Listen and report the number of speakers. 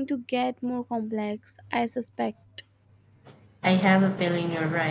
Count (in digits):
2